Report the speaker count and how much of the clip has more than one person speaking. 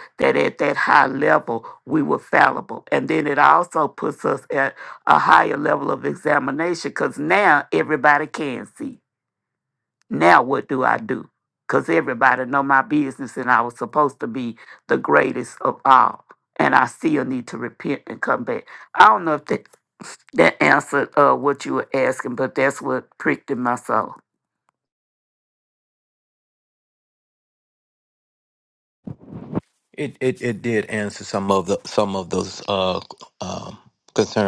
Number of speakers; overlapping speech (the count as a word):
two, no overlap